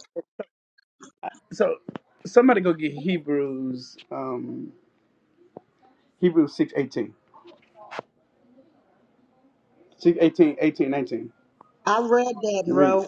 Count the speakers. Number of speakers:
two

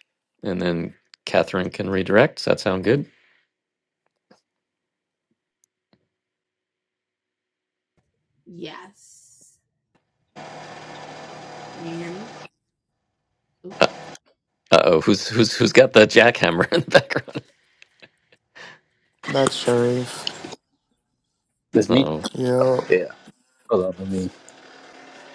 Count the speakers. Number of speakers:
four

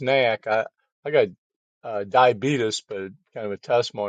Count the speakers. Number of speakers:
one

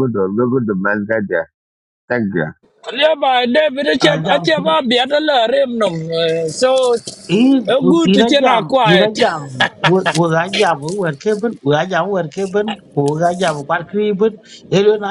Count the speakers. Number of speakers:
three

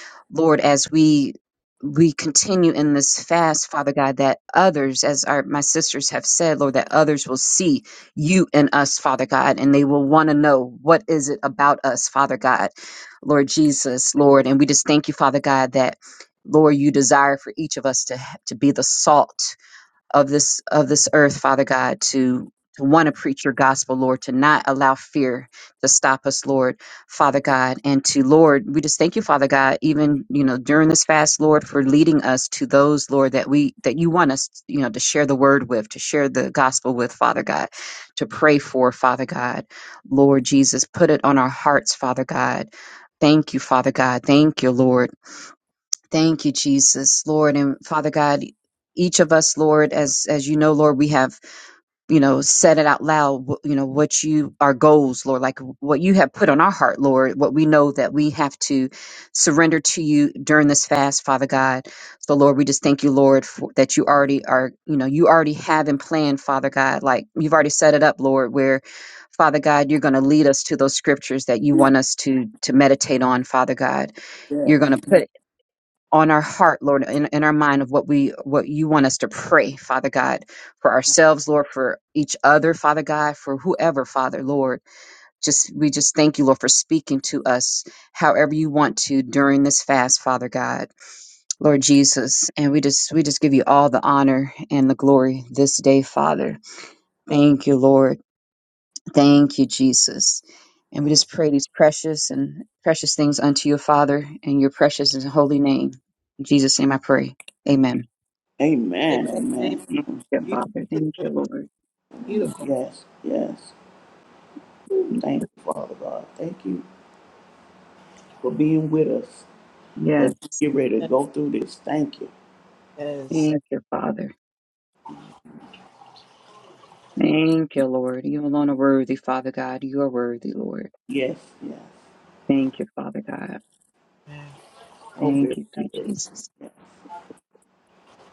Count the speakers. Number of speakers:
three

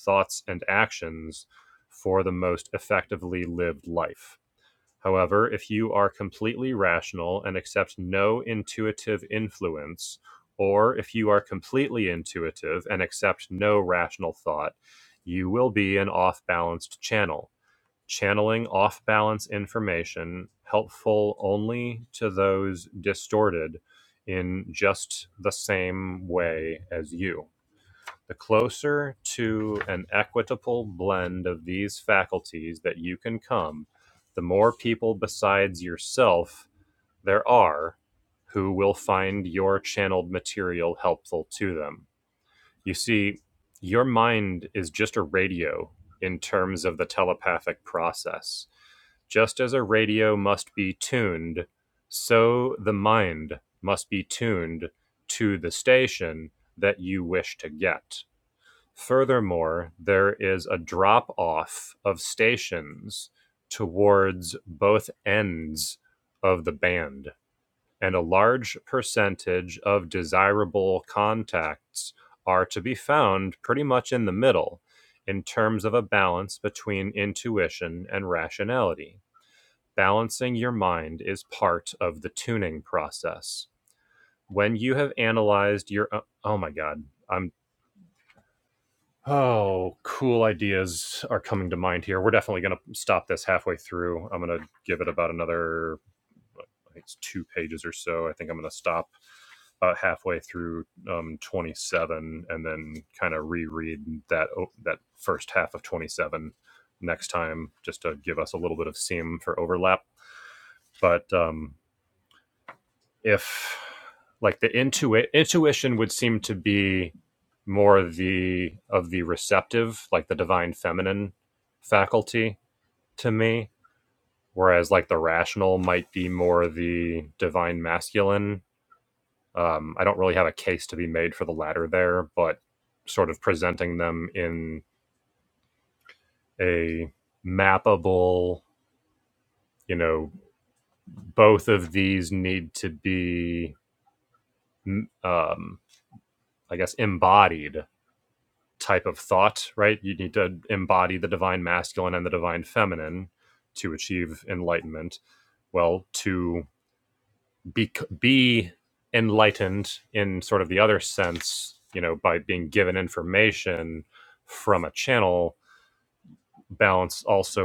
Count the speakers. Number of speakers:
one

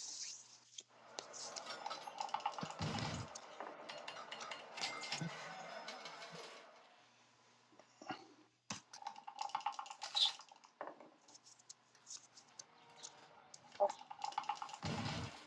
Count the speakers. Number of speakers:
zero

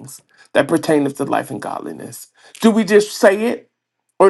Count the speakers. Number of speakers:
one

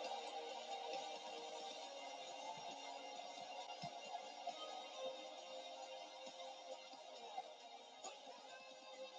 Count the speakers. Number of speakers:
zero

